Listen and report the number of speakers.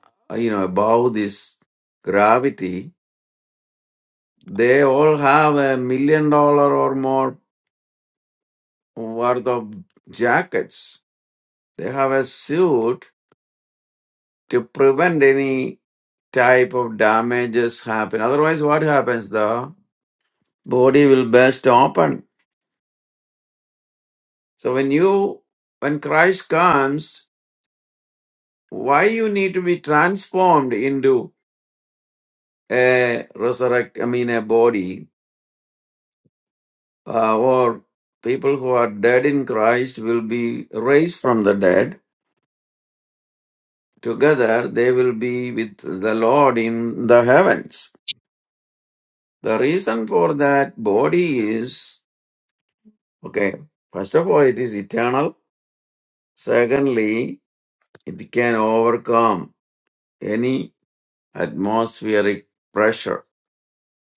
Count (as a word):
one